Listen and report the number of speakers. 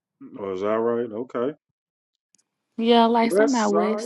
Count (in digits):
2